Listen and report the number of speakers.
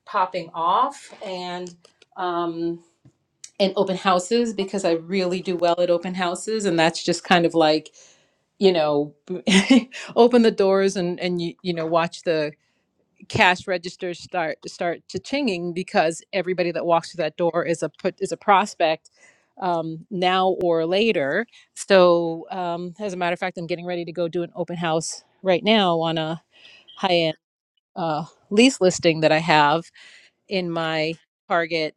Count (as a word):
one